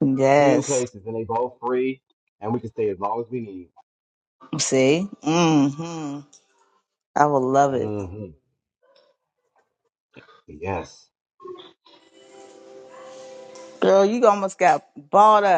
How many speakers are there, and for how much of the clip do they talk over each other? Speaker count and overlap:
two, about 4%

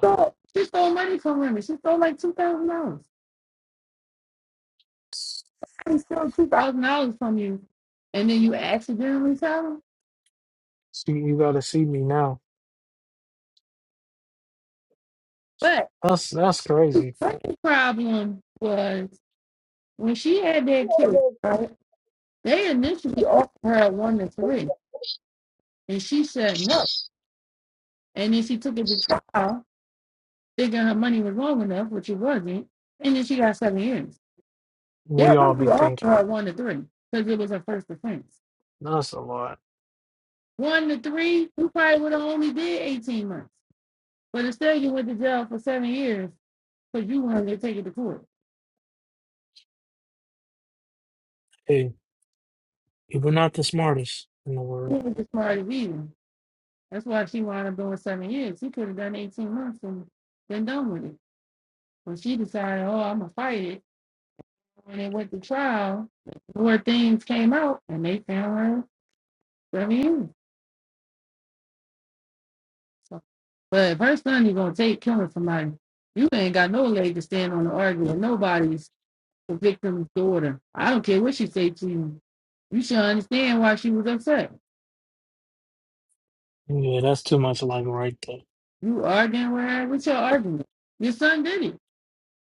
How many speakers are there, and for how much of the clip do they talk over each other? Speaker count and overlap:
two, about 1%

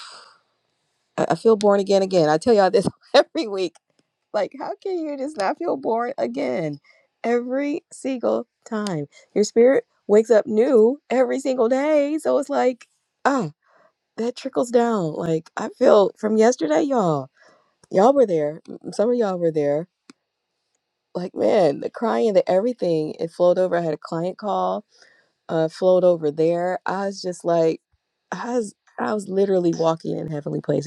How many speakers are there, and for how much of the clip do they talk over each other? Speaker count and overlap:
one, no overlap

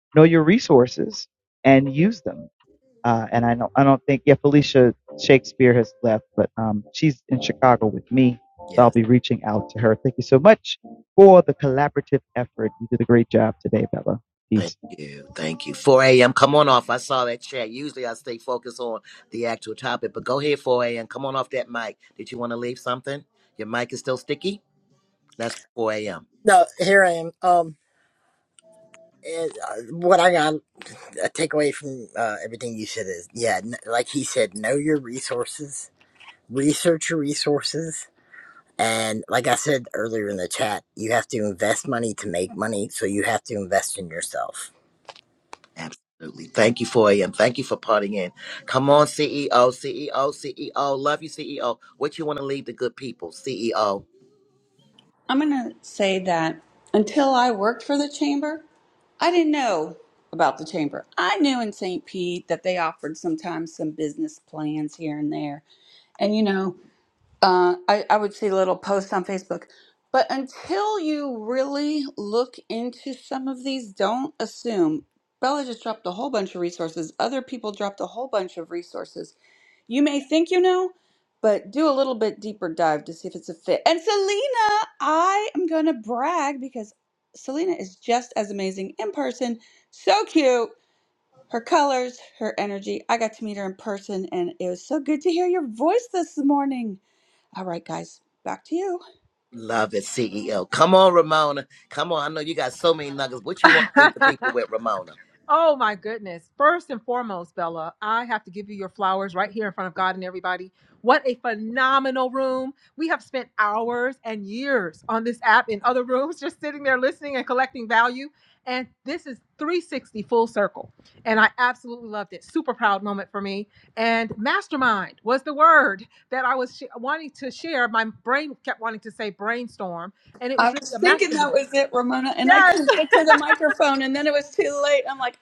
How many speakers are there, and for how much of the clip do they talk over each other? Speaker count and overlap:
five, about 2%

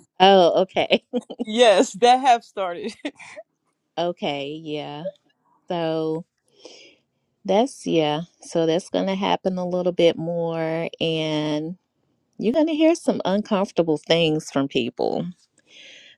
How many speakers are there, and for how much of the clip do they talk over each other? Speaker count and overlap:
two, no overlap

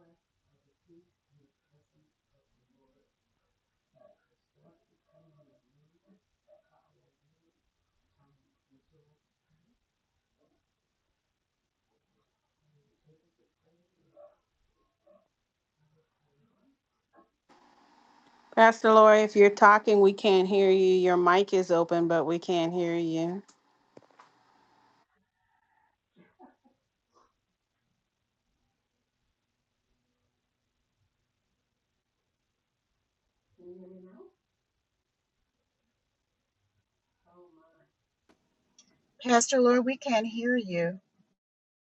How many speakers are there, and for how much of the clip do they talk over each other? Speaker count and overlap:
two, no overlap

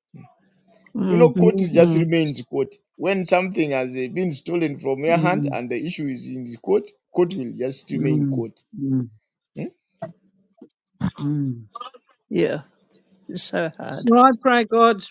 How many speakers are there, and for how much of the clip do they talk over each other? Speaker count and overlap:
three, about 13%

